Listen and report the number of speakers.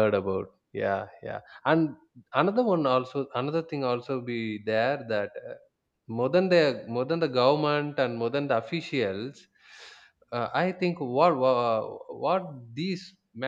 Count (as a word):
one